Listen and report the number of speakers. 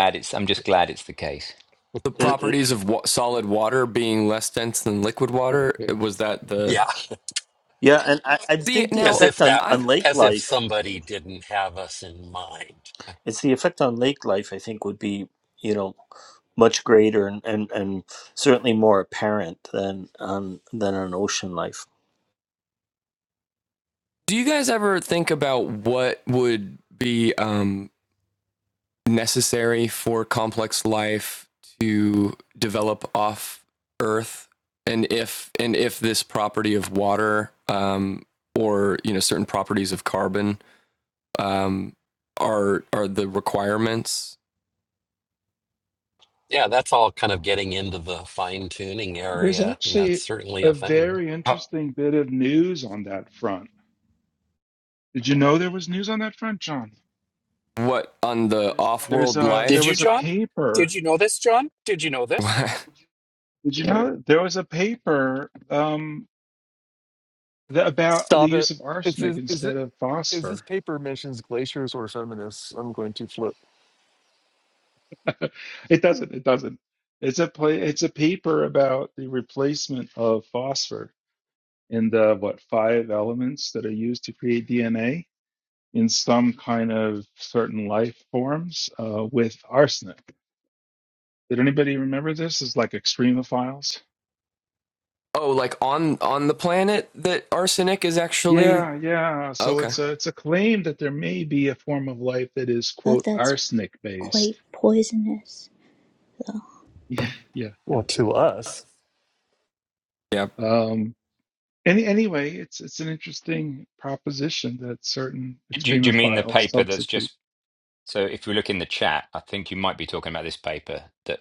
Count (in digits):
8